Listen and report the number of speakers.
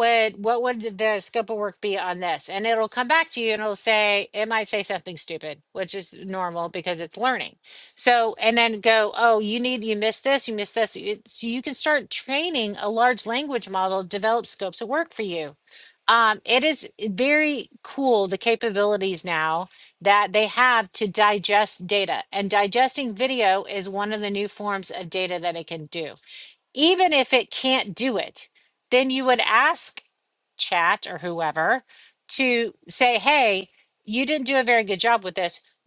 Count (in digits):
1